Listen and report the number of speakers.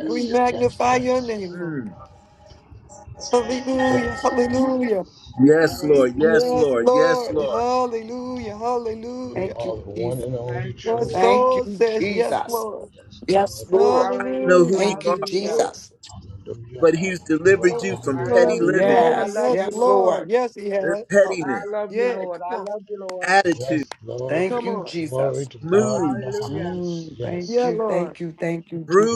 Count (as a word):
five